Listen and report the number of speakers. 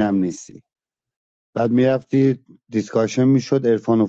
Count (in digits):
1